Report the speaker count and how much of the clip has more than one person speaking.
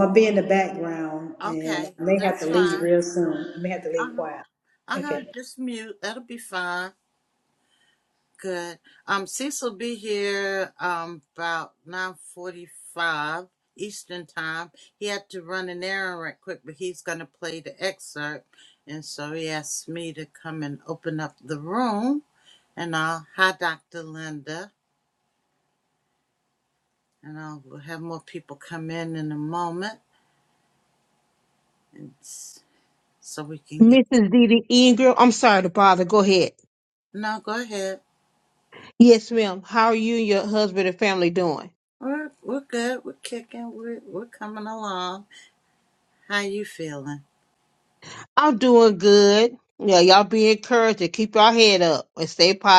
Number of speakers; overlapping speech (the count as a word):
three, about 4%